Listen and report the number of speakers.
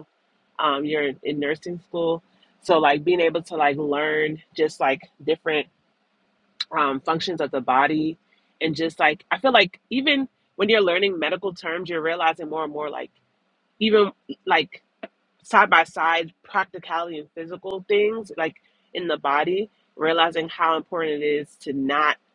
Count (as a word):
one